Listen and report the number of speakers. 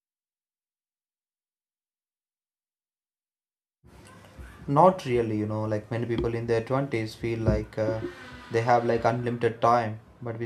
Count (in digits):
1